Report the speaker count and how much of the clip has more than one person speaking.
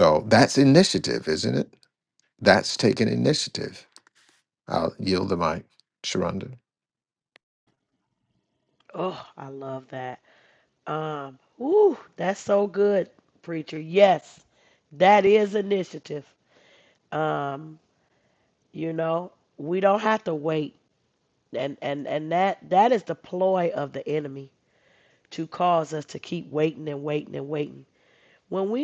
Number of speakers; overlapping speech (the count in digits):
2, no overlap